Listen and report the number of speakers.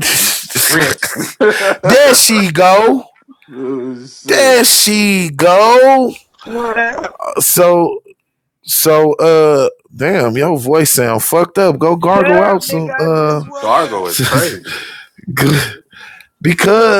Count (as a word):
three